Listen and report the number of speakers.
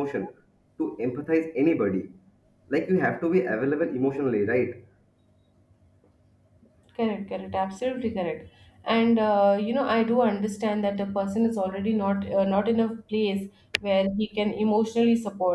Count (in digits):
2